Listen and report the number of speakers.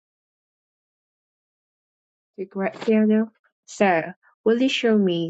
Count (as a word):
one